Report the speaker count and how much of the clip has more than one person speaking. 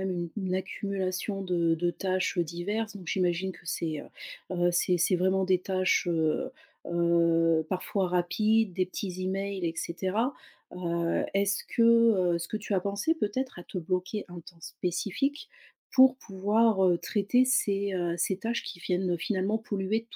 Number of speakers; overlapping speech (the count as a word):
one, no overlap